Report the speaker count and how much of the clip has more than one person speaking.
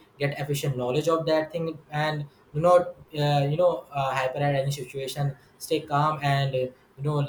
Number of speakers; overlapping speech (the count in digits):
1, no overlap